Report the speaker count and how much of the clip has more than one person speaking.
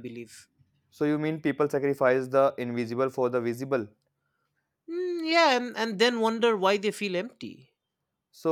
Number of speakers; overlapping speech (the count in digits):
2, no overlap